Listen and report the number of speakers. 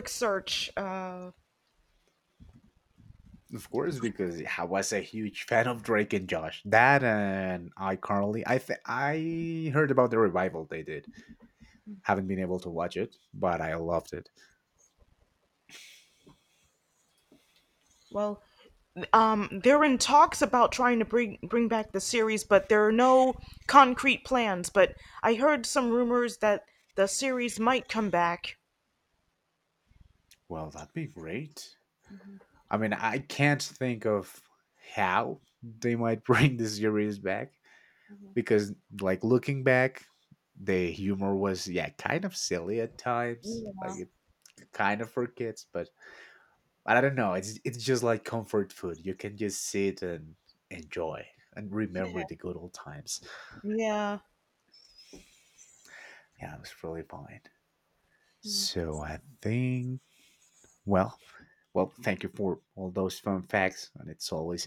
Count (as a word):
two